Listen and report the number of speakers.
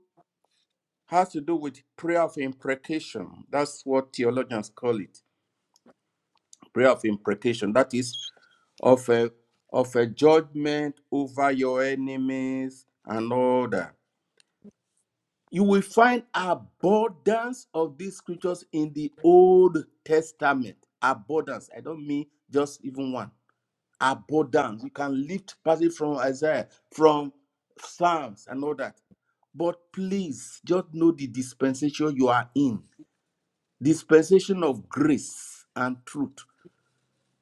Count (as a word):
one